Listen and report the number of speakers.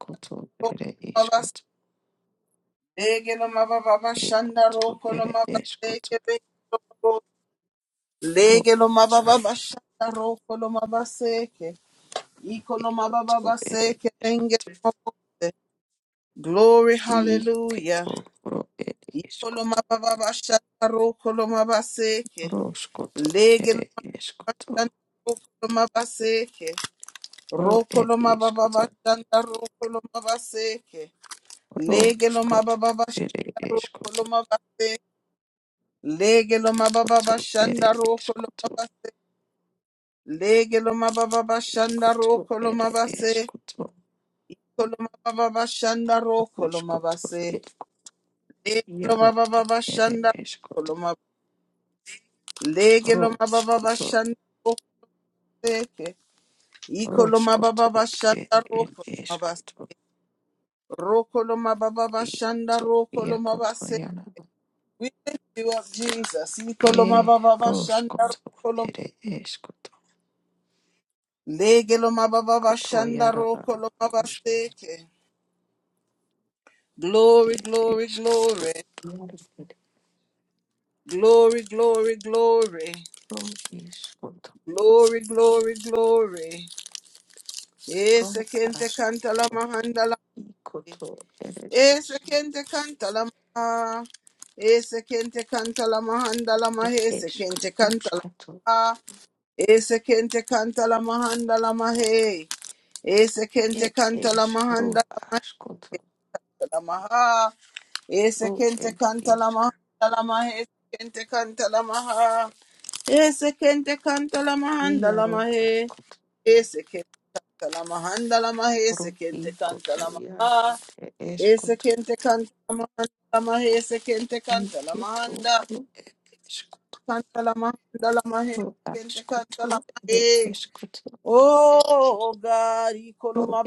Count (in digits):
2